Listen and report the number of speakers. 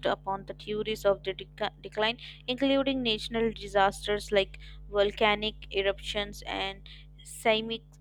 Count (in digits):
1